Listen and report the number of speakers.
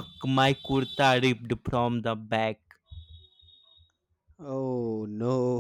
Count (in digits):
2